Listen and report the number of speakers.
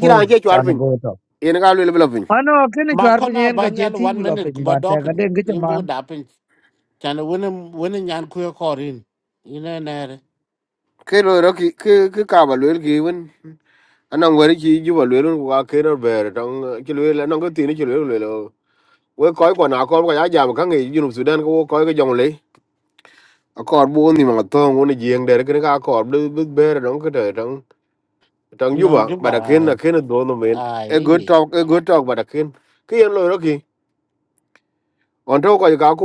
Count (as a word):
three